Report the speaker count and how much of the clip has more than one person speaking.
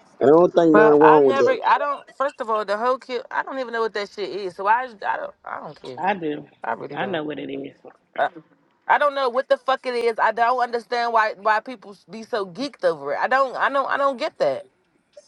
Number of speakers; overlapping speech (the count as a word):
three, about 7%